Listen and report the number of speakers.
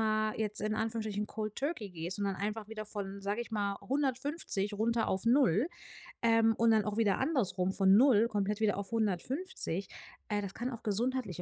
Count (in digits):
1